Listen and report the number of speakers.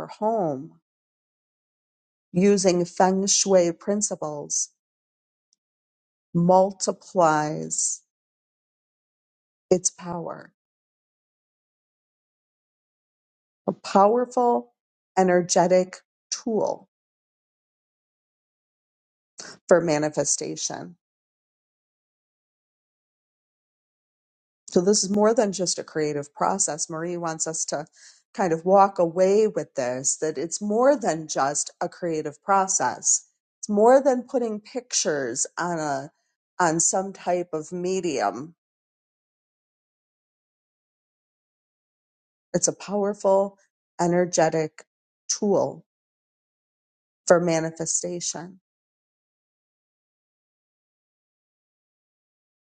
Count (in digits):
1